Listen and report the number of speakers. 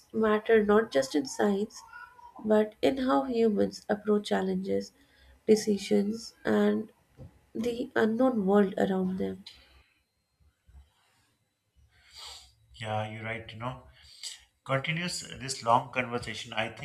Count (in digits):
2